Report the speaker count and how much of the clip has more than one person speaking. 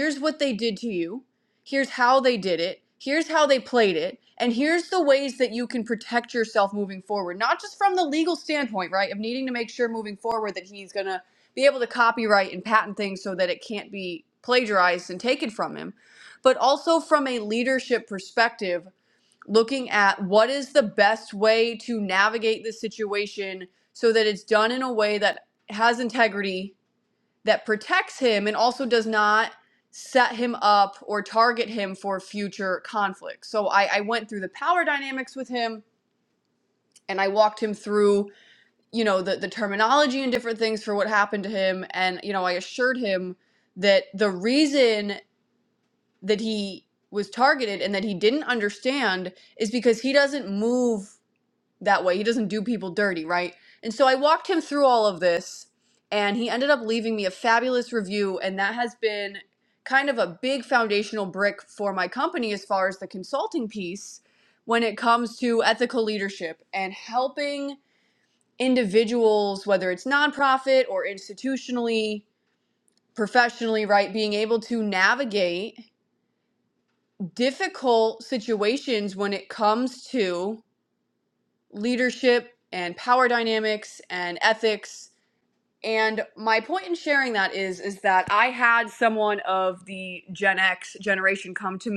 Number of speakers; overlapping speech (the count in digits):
1, no overlap